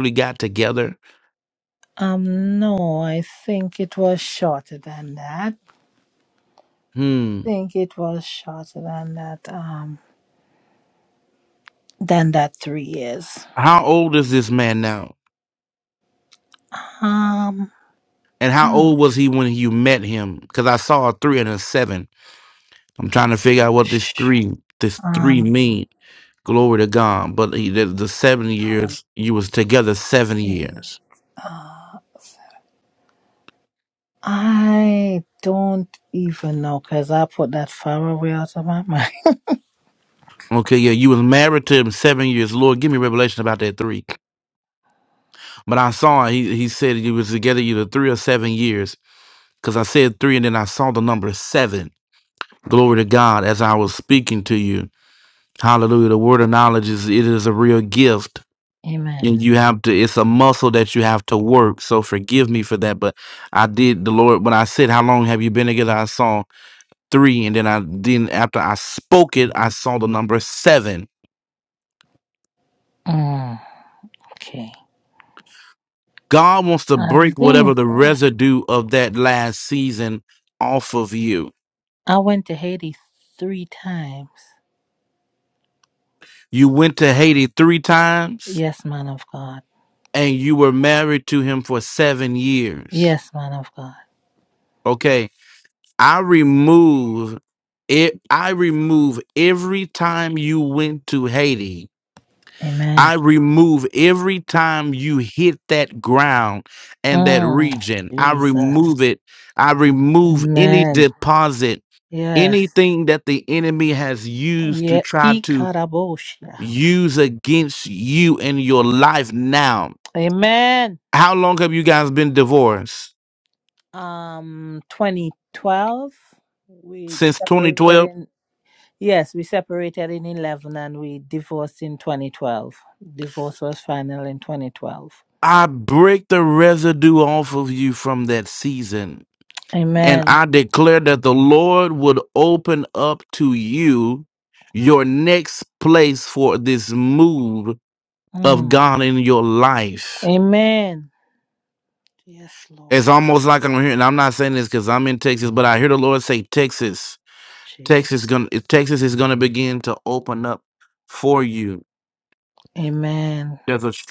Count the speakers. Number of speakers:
2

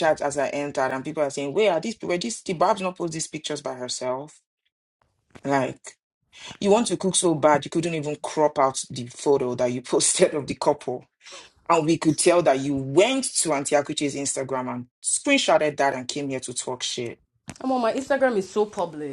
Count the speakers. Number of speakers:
2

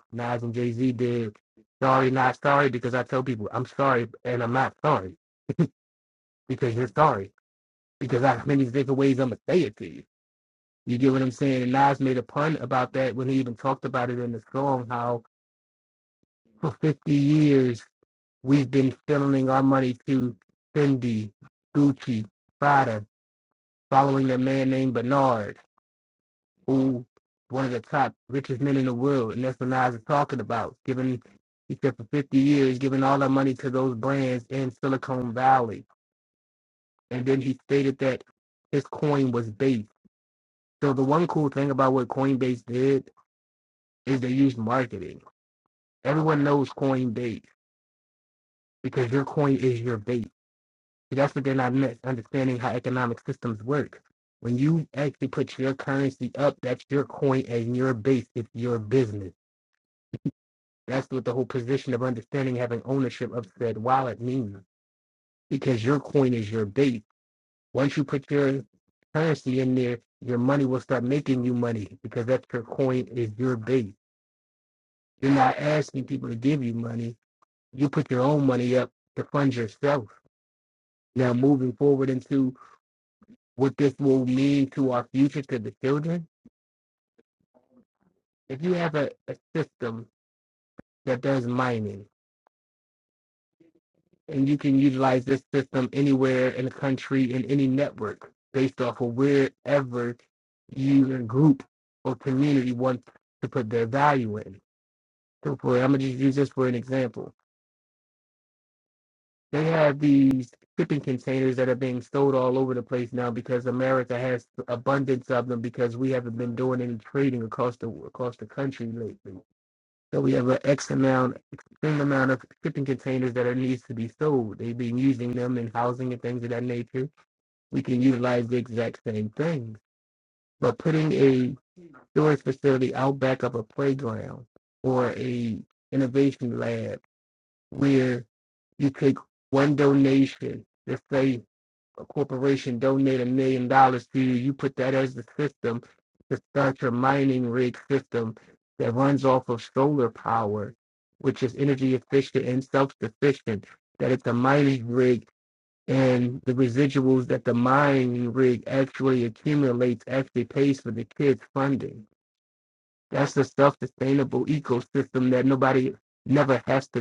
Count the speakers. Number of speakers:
1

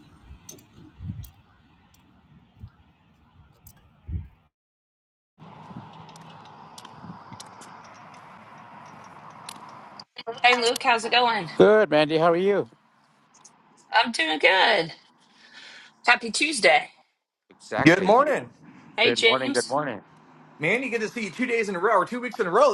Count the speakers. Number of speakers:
3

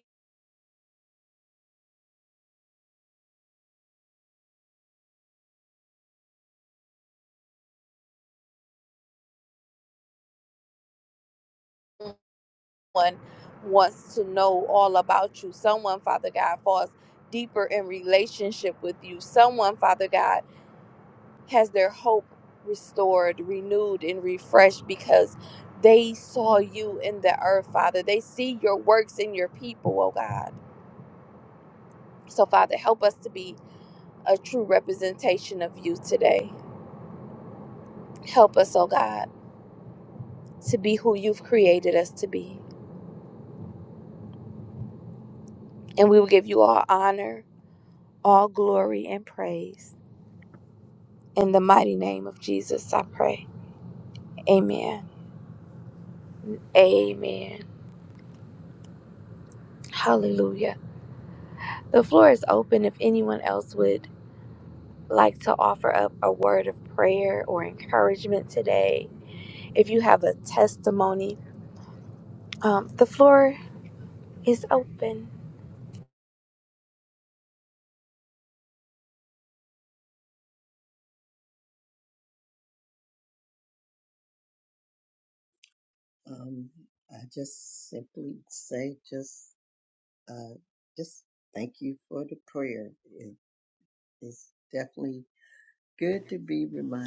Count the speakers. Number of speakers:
2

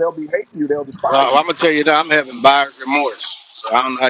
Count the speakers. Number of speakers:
2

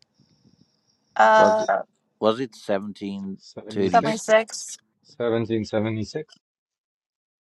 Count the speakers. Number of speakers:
3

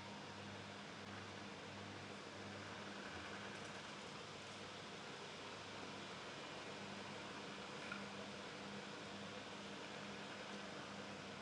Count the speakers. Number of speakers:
0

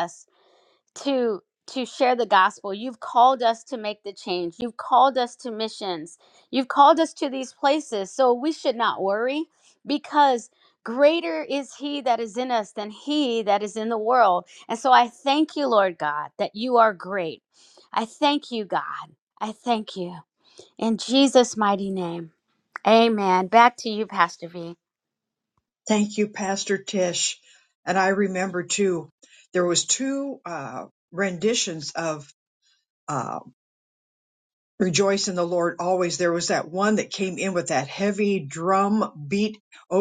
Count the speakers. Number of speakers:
2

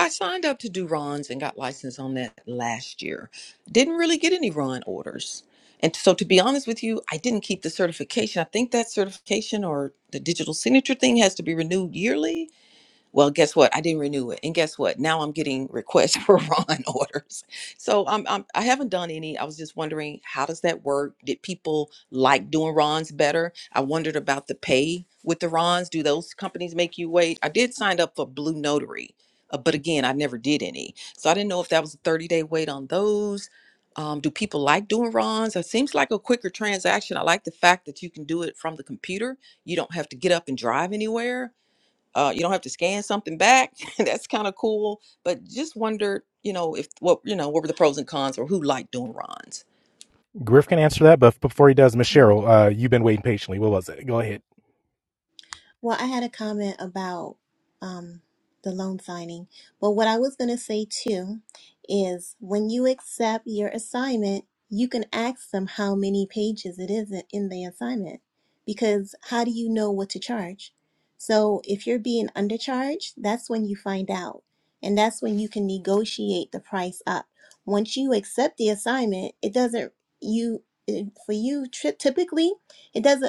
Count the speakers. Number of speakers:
3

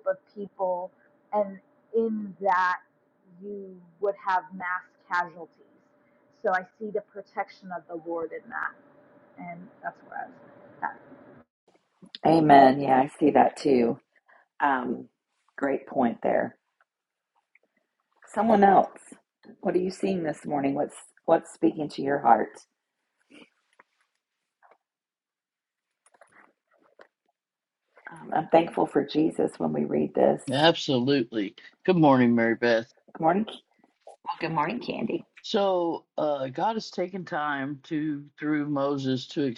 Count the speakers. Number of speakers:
3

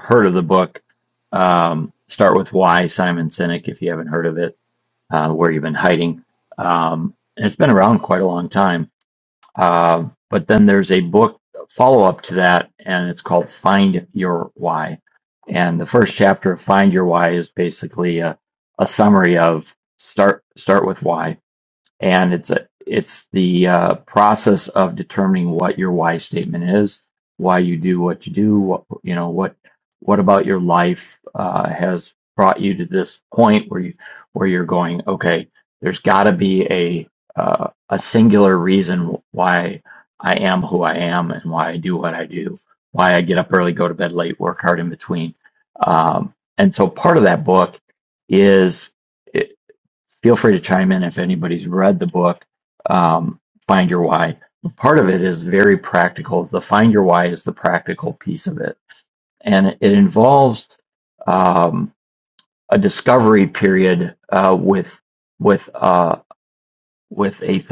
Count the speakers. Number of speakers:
1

